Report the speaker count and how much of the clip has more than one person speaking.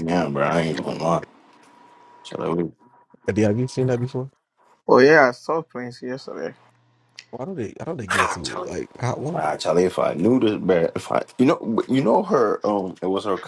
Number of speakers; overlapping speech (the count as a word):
three, about 4%